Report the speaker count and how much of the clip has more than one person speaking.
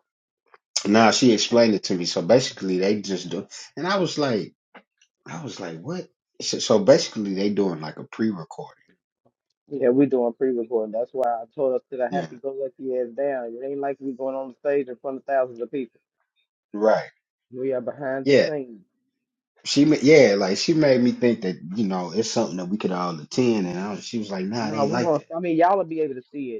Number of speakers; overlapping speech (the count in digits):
2, about 4%